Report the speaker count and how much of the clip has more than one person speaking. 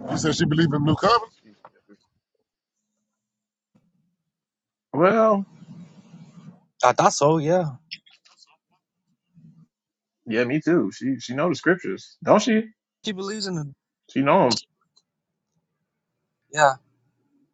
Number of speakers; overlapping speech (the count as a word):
three, no overlap